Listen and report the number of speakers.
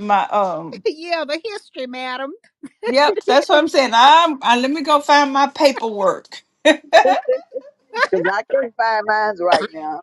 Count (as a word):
three